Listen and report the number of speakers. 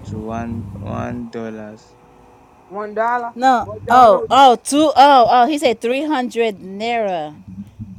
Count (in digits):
3